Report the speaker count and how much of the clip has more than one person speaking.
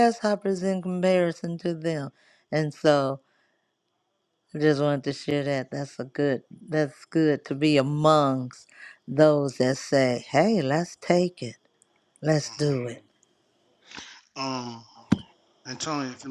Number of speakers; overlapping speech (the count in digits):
2, about 2%